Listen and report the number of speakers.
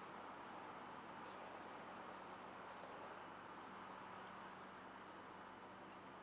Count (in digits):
0